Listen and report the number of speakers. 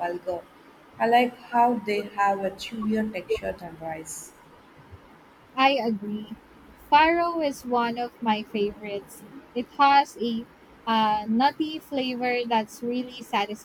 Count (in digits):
2